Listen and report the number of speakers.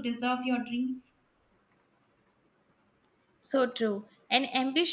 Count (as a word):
two